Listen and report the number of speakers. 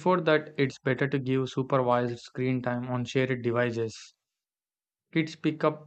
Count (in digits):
1